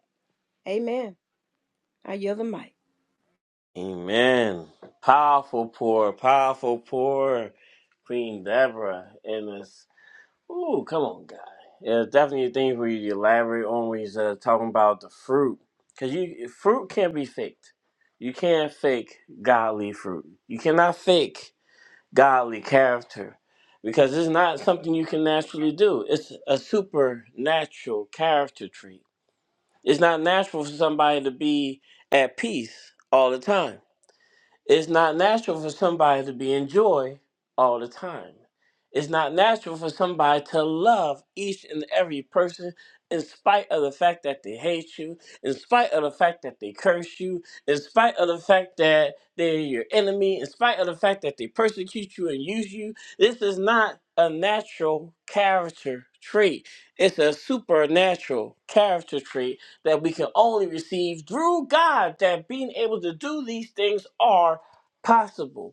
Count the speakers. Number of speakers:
2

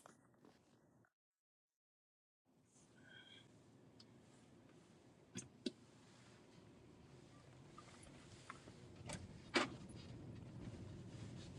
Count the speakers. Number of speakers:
0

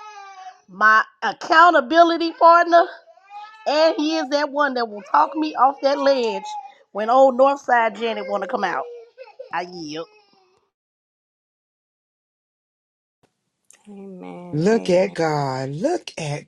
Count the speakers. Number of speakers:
3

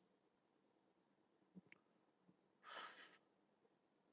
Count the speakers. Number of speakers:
0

